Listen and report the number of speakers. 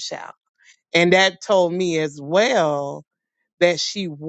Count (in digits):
1